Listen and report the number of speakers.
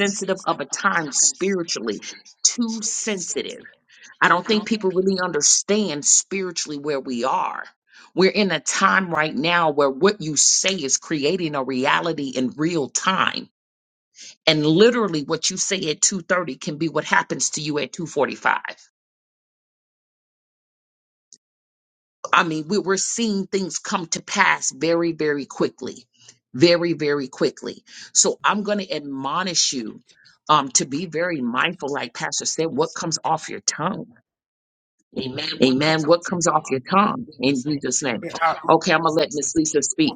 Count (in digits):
1